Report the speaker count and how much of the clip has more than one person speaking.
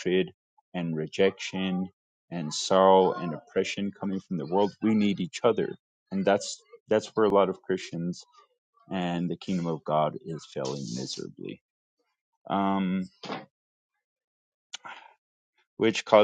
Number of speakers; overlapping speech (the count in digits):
1, no overlap